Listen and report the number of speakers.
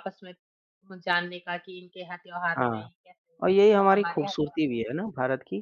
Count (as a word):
two